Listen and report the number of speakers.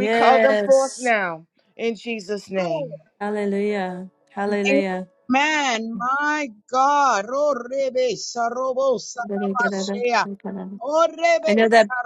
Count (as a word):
three